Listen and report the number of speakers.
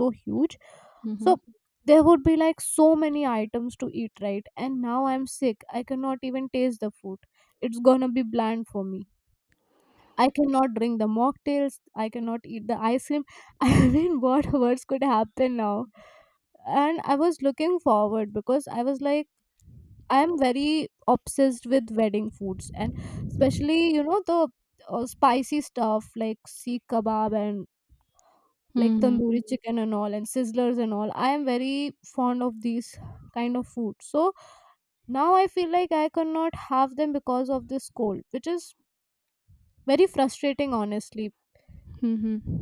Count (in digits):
2